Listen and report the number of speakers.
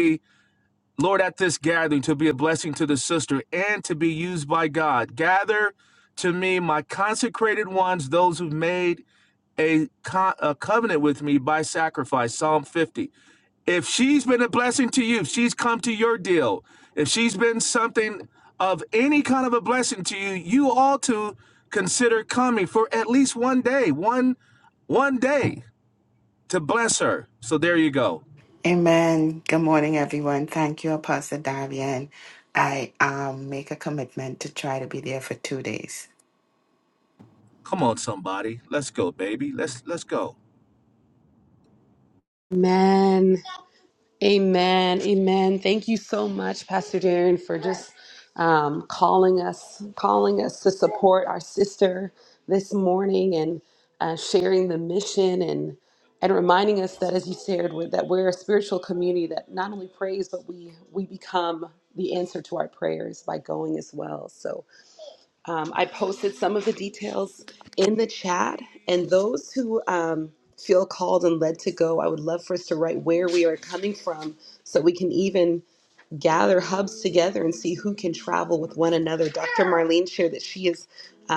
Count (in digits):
3